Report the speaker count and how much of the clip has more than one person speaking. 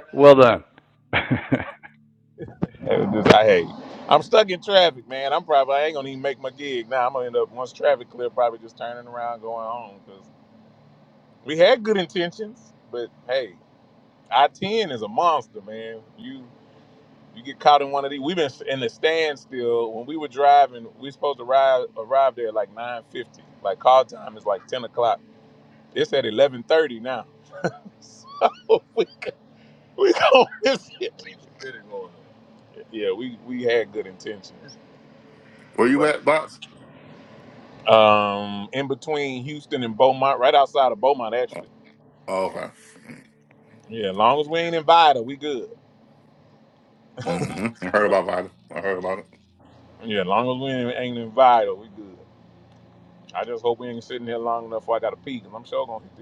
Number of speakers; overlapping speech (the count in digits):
3, under 1%